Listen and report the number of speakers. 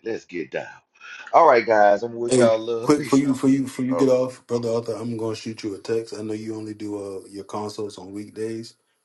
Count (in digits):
2